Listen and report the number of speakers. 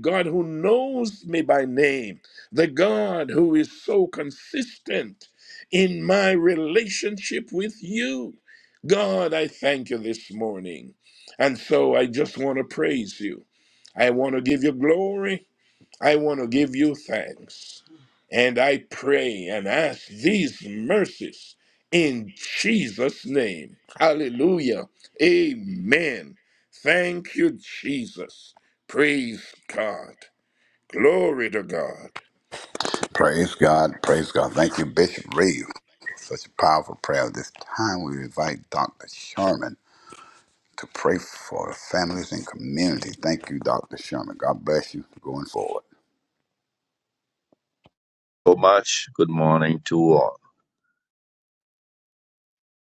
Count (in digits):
3